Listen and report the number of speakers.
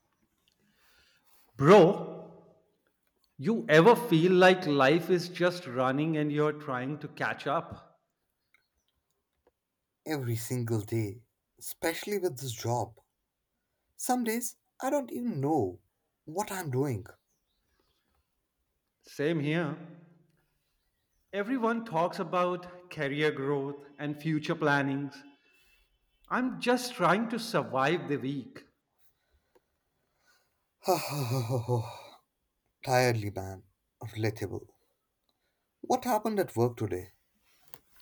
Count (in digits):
2